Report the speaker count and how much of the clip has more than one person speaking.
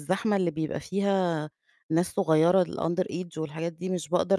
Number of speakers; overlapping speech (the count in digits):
1, no overlap